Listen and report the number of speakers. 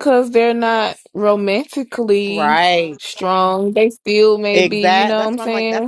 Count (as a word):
two